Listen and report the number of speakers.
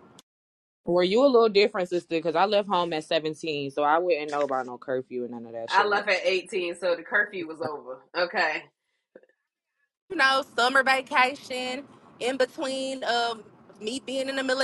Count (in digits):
3